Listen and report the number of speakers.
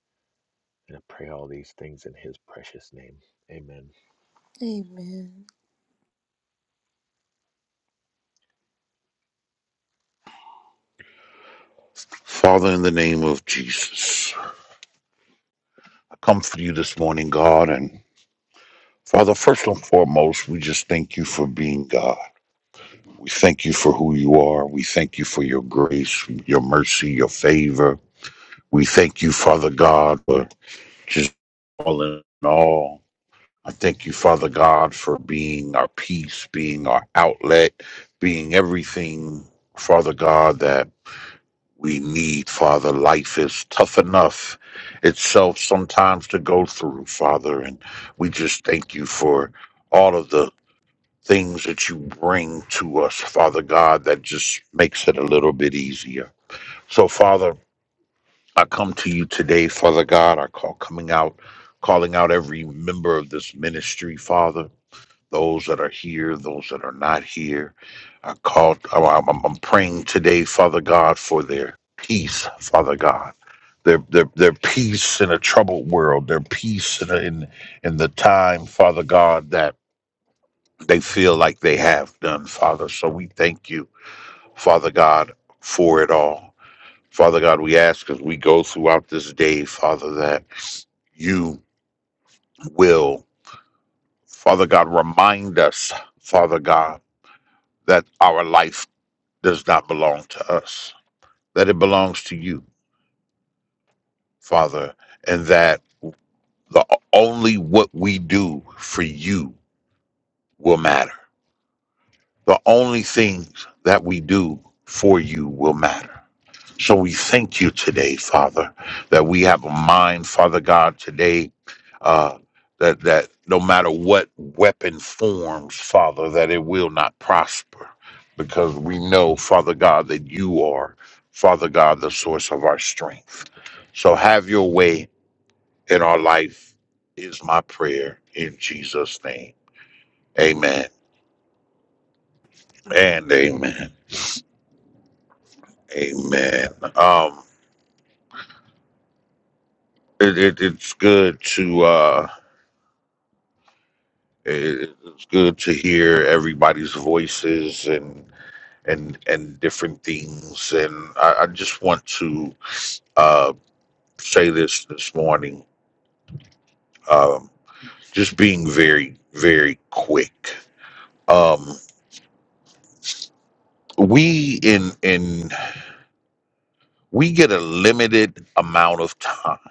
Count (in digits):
3